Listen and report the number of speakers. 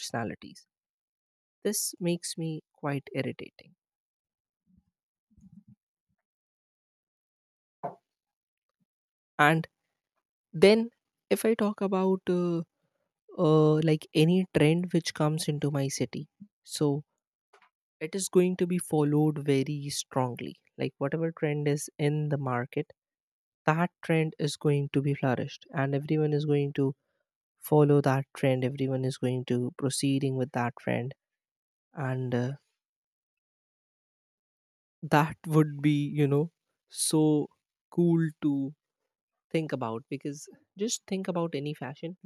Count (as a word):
one